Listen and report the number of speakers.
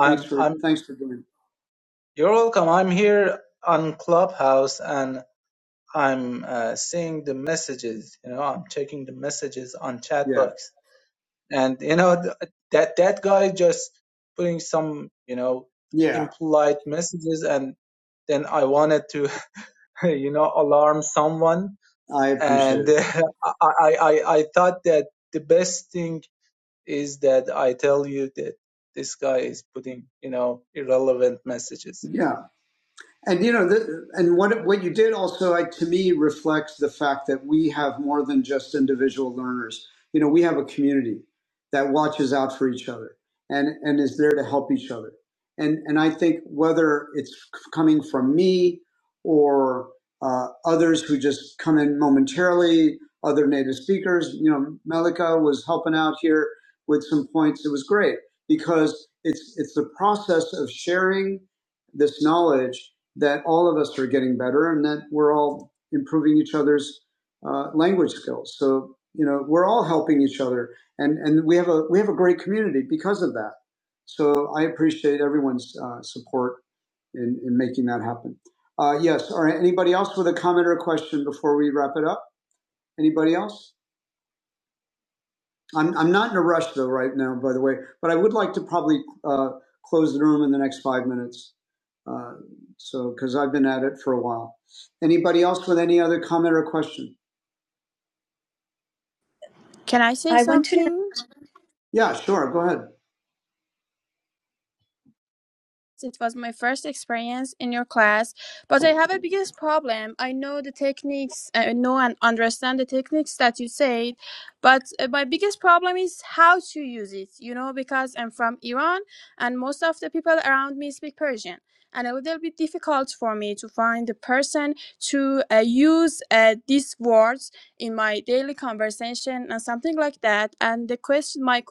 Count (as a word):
three